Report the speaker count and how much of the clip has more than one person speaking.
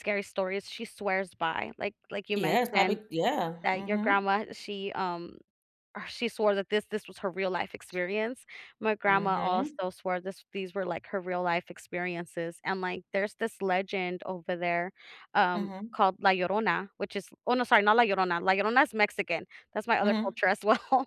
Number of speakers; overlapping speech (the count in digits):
2, about 12%